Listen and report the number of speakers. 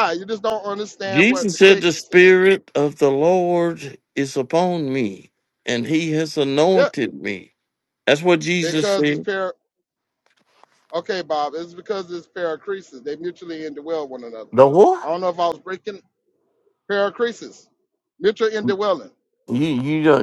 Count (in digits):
2